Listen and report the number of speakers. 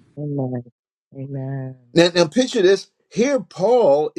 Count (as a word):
two